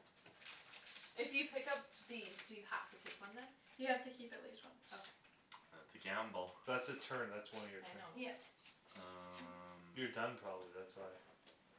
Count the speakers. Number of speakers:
4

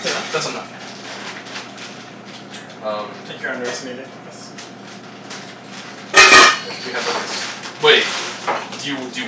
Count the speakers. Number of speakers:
2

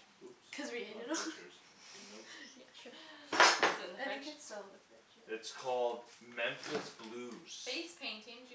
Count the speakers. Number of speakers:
3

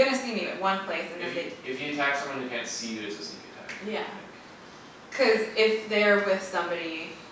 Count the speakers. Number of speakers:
2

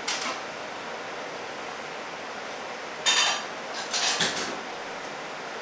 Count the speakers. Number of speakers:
0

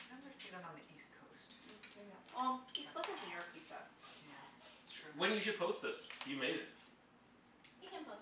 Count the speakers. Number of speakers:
3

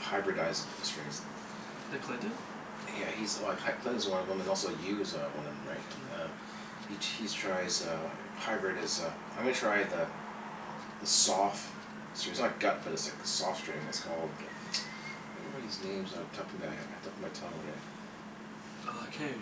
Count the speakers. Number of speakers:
2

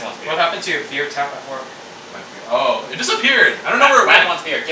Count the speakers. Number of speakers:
3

